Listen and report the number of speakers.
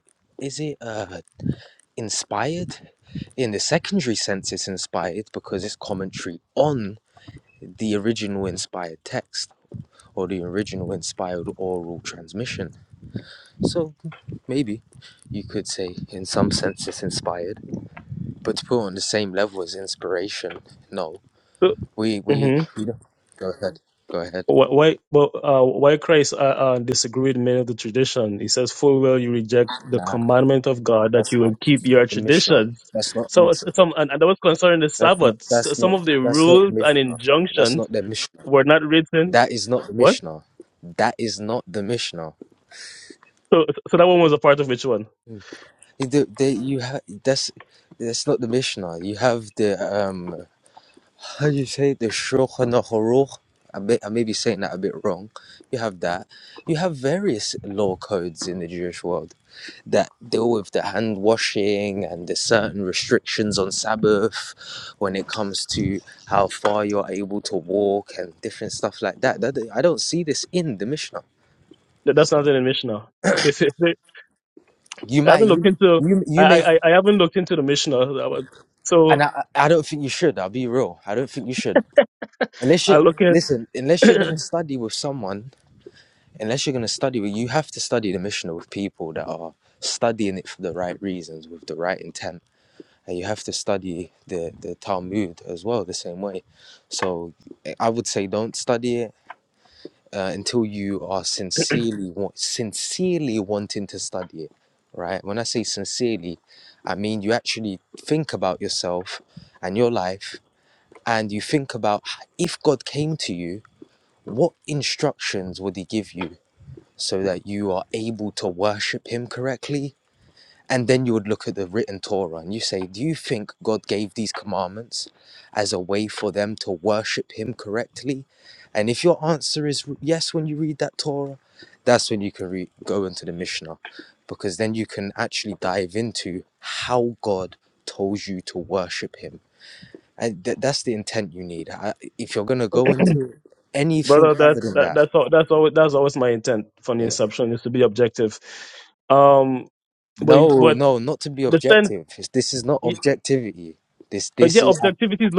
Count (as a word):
two